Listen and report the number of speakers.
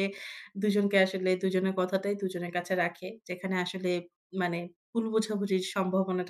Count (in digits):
1